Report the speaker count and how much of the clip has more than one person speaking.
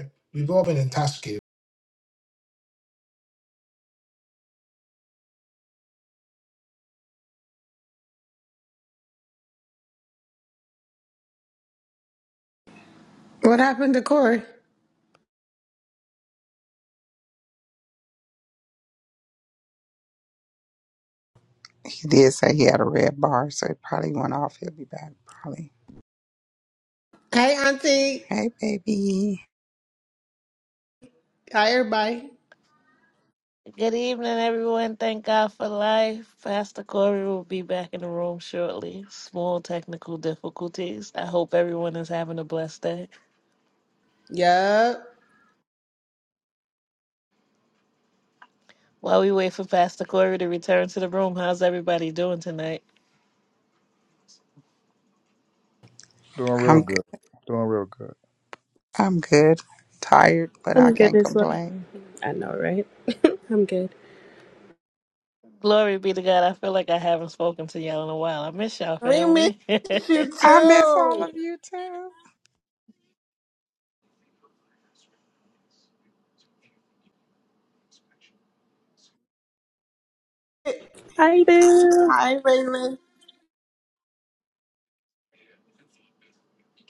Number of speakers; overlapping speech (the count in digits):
6, about 3%